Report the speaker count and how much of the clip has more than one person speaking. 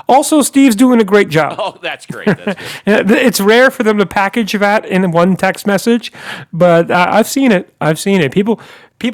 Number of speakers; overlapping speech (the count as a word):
two, under 1%